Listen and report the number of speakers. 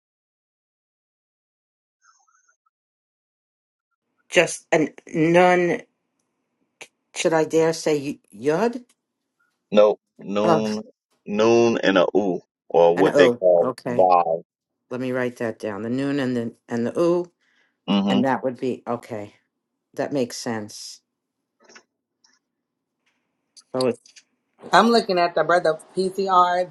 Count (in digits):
3